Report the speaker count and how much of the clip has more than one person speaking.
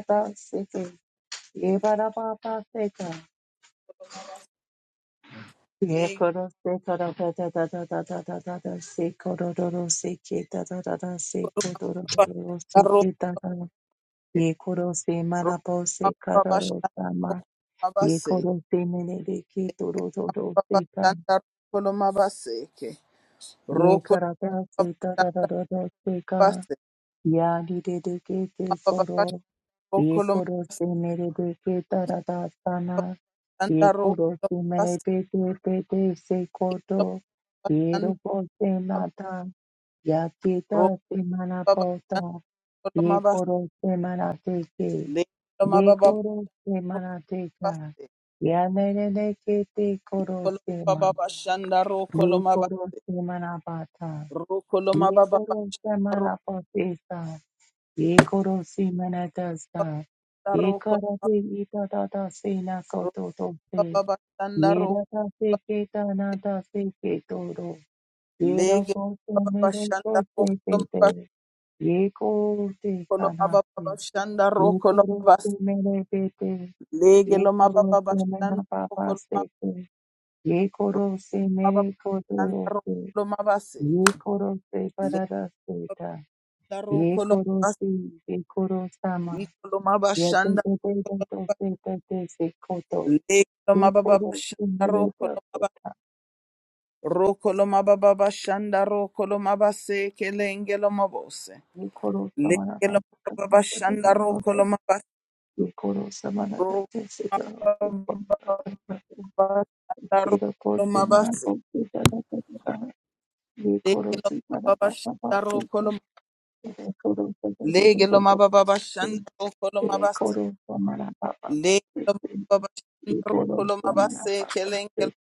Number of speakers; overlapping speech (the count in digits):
2, about 26%